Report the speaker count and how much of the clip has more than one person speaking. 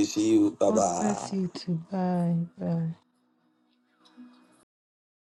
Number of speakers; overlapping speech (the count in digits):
2, about 13%